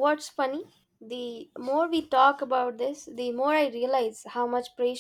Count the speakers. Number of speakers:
one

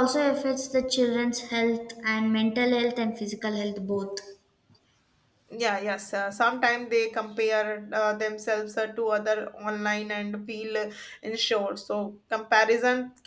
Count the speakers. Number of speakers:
two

